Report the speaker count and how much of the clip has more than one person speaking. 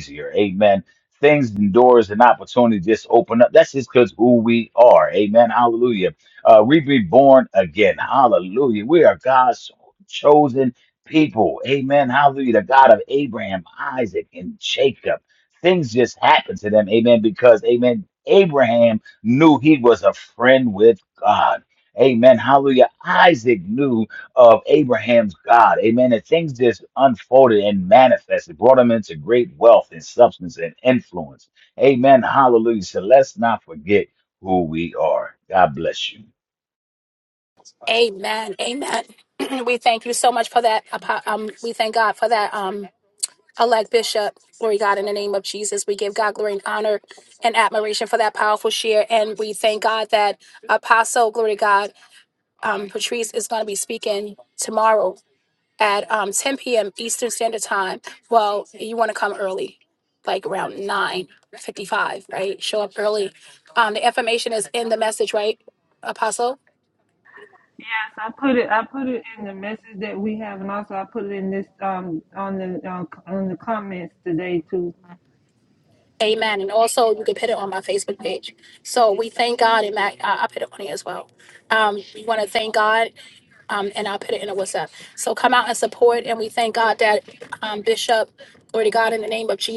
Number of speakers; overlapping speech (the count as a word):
three, no overlap